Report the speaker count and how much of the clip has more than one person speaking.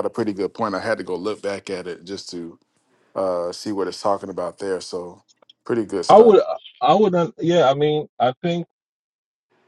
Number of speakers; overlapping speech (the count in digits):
2, about 3%